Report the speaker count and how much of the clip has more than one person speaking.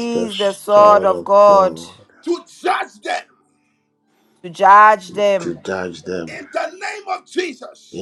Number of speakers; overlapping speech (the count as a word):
three, about 21%